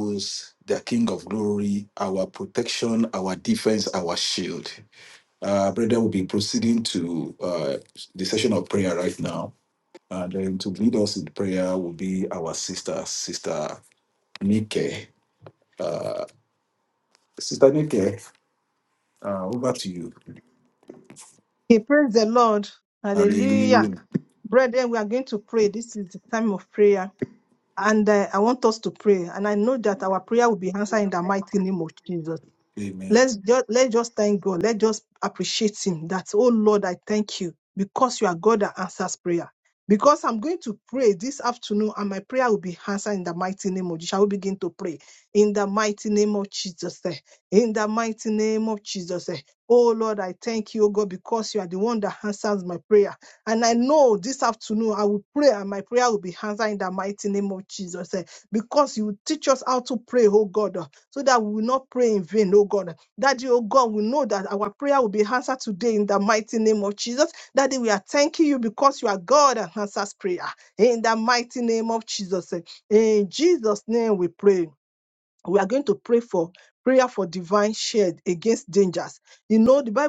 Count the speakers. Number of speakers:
two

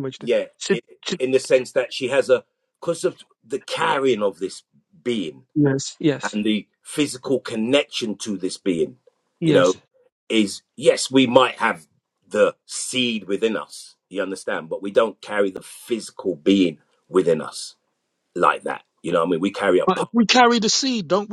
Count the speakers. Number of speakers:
three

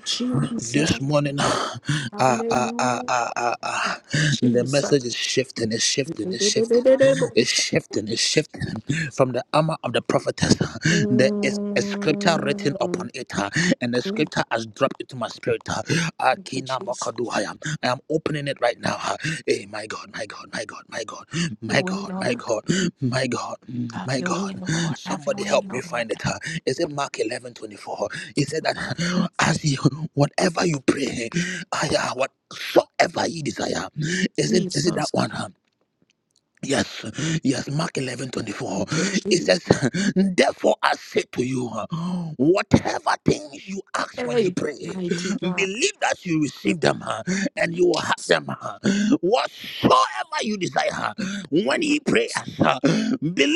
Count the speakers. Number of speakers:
two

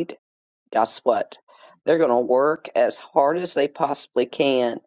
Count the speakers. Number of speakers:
one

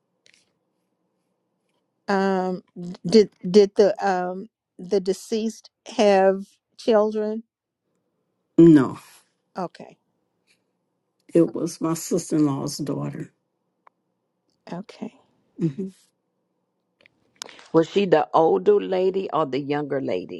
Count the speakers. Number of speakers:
three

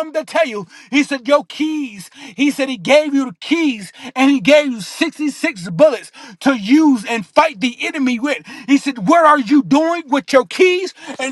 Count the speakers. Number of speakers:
one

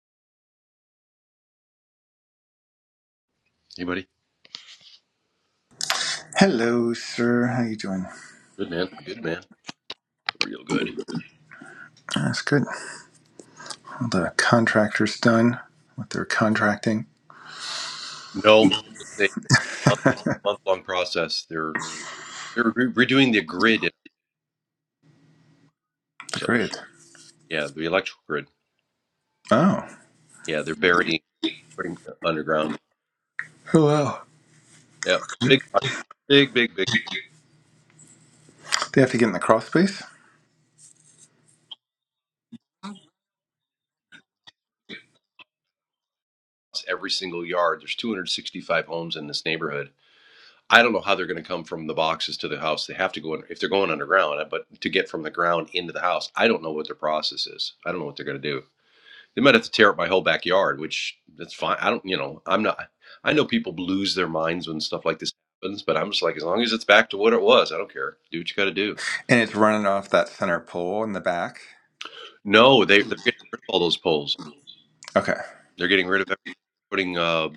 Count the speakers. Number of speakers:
two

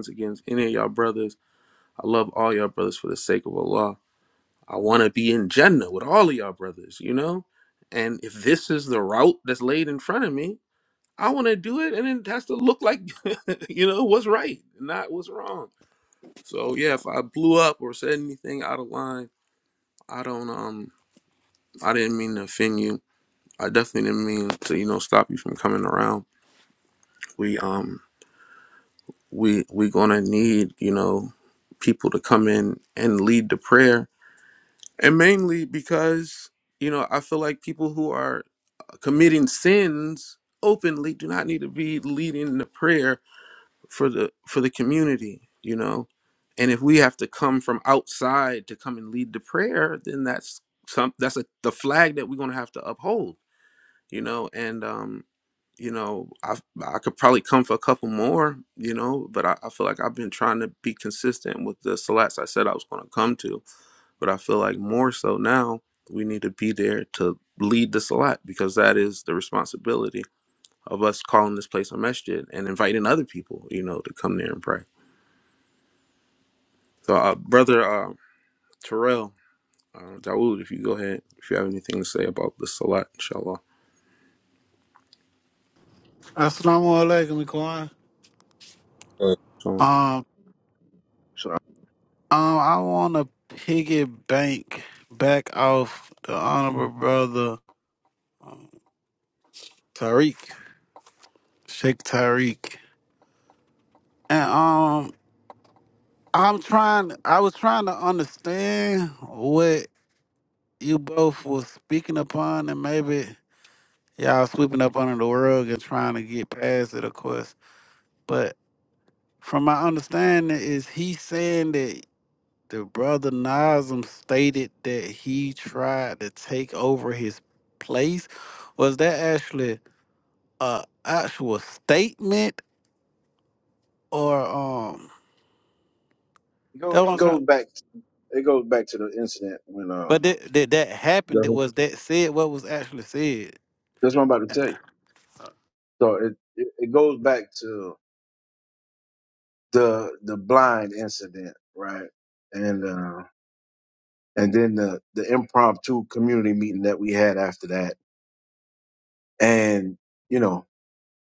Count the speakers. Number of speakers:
three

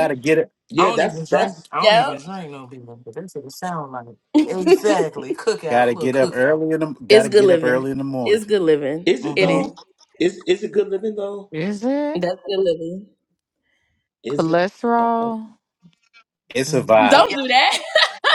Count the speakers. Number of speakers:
five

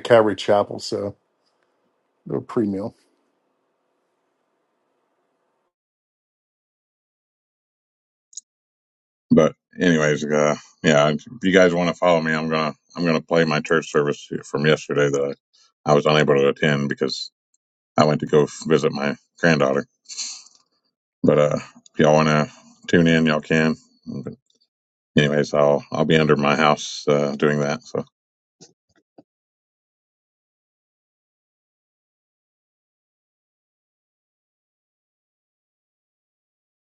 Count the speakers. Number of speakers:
two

